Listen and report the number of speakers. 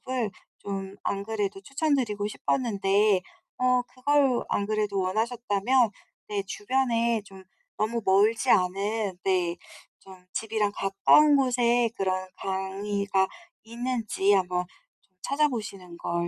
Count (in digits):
1